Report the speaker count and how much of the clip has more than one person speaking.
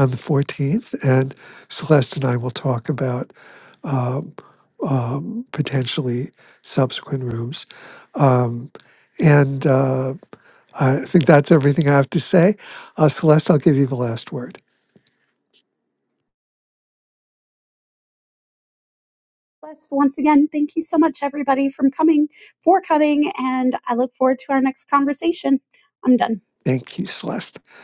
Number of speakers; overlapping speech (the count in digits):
2, no overlap